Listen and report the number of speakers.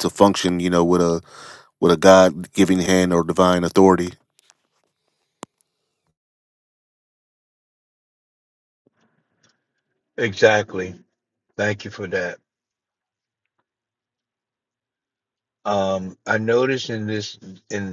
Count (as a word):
two